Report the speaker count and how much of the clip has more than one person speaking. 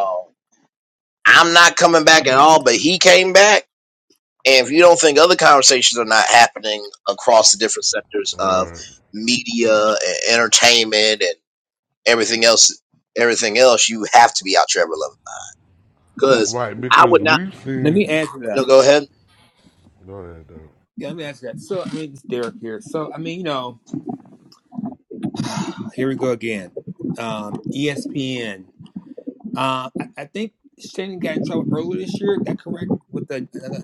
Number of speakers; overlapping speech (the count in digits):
3, about 4%